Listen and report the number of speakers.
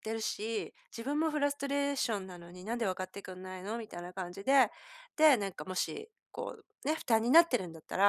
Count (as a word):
one